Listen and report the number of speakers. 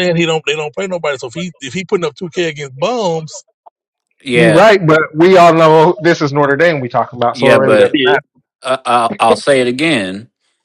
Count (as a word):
three